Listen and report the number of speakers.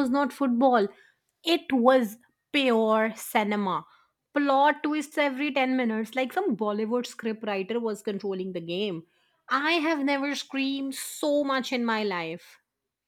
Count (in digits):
1